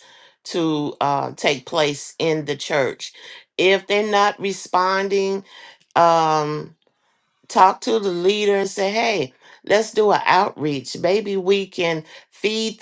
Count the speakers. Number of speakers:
one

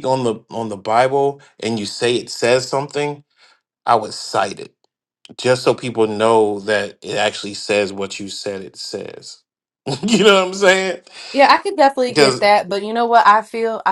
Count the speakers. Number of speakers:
two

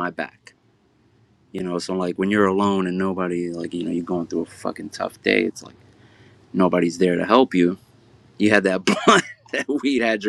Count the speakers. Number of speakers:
one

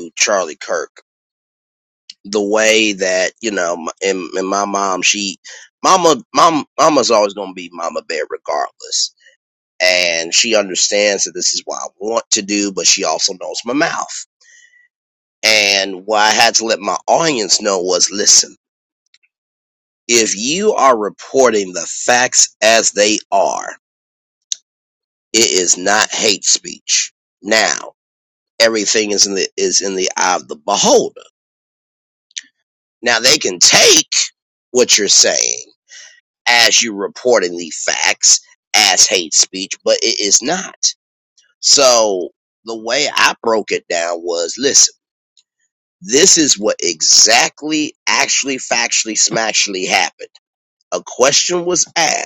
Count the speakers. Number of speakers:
one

